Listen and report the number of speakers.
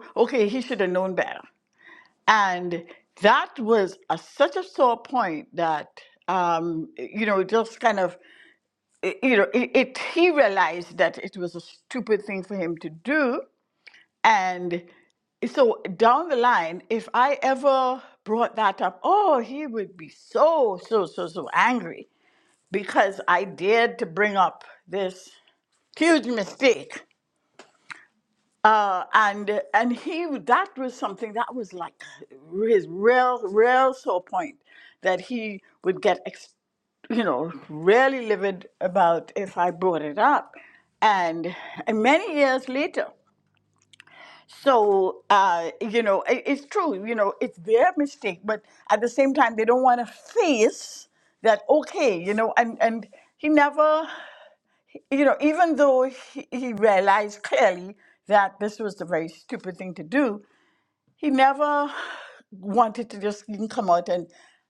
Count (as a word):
one